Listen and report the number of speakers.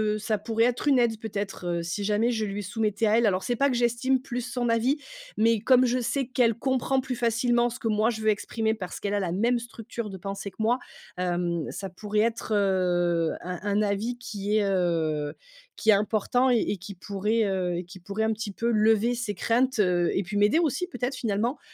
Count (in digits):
1